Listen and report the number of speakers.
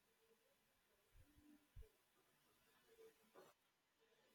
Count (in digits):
0